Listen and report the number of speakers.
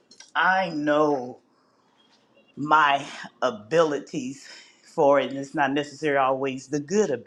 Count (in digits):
1